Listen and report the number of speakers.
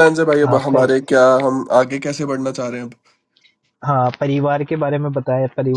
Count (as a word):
two